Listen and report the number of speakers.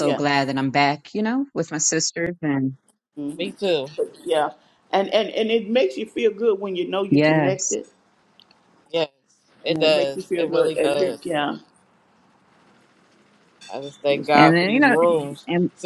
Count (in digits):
3